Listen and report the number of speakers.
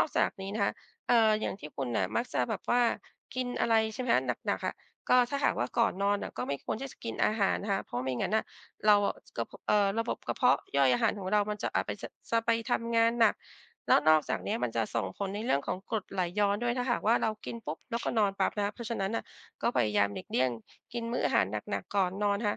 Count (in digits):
1